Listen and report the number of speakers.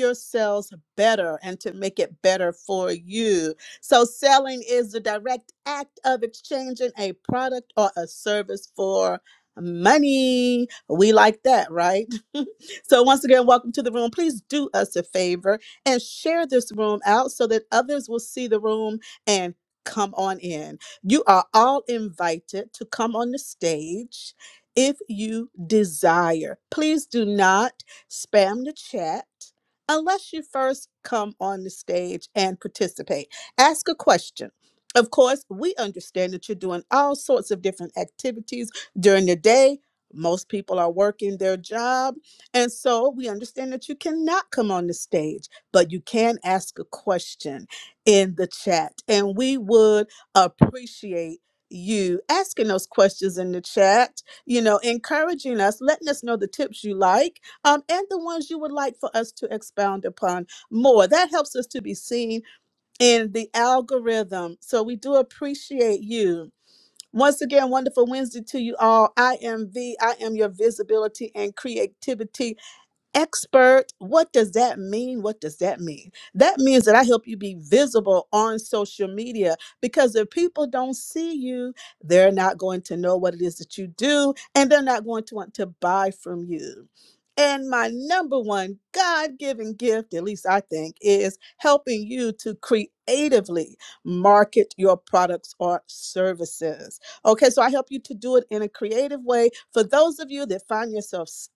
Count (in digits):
1